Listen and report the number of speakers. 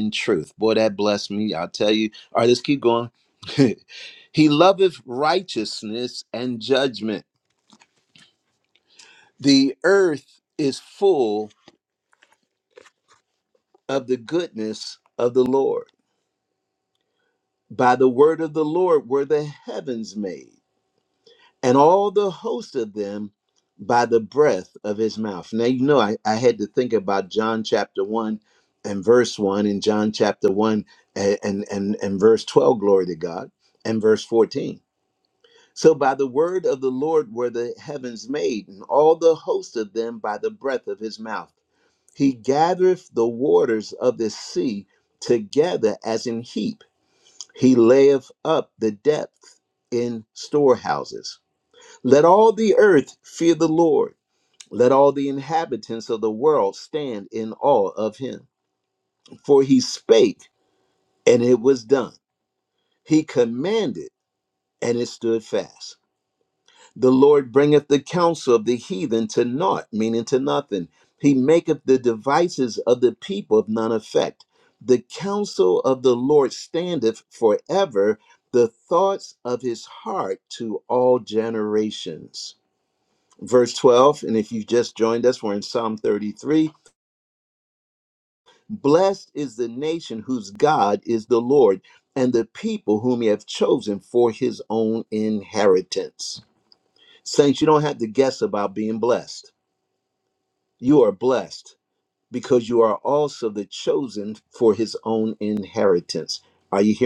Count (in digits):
1